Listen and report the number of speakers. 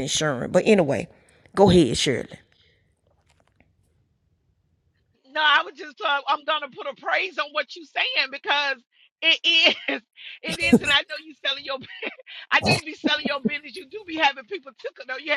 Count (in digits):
2